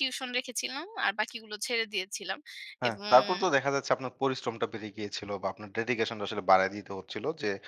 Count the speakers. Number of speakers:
2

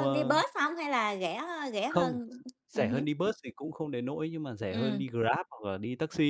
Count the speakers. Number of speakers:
2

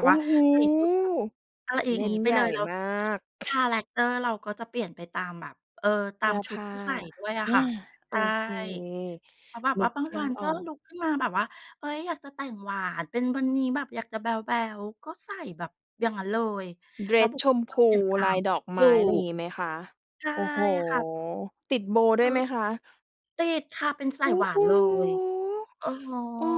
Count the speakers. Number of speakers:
2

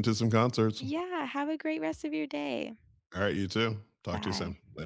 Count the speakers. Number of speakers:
2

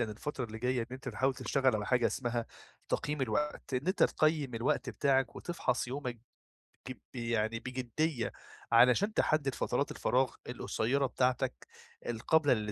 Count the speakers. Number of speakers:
1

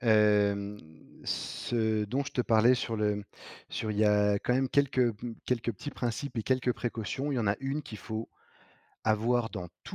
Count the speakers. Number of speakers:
1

